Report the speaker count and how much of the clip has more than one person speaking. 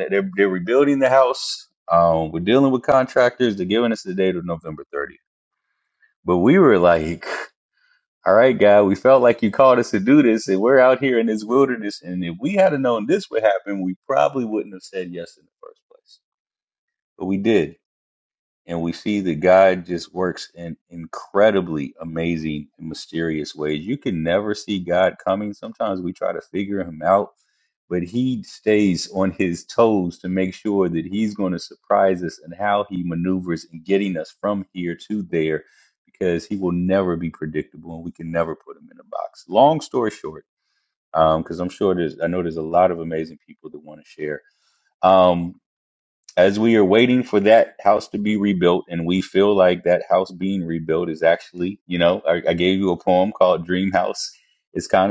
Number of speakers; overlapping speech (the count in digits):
1, no overlap